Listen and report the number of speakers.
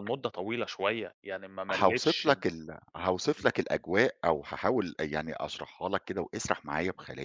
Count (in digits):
2